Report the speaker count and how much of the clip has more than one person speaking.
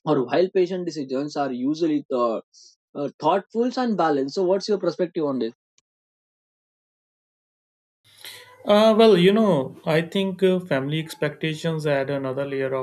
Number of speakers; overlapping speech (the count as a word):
two, no overlap